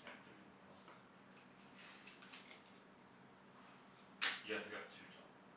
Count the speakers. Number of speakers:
1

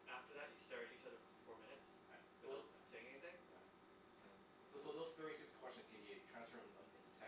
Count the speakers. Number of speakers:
2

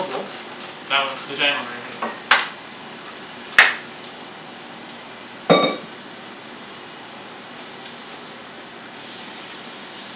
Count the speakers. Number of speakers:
1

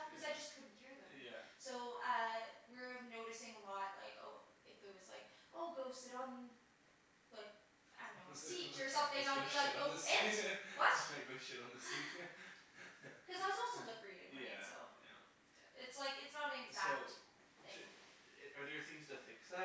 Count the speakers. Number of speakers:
2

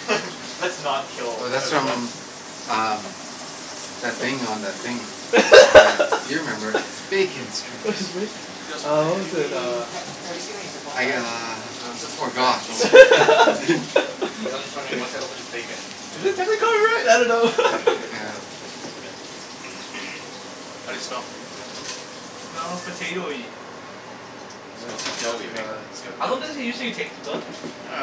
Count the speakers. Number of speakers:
4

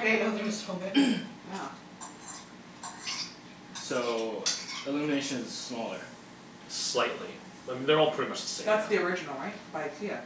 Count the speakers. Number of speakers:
4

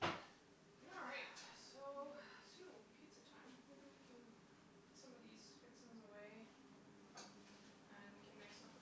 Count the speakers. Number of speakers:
1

